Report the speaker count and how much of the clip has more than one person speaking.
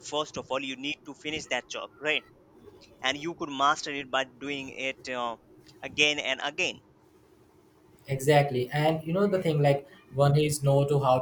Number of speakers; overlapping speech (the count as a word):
two, no overlap